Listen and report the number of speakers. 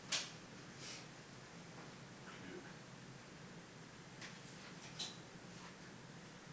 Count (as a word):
zero